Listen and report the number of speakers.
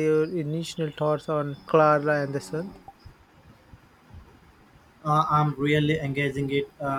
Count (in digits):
2